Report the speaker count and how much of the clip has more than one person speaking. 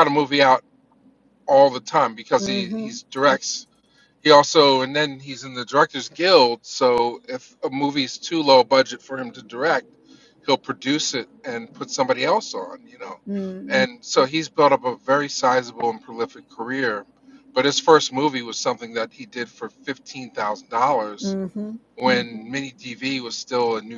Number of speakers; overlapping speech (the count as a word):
two, about 5%